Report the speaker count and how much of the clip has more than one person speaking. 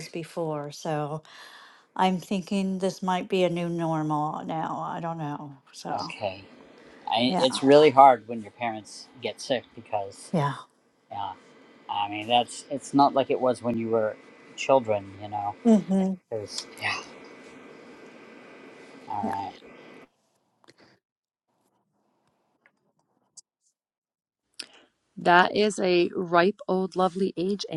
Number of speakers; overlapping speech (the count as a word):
three, about 2%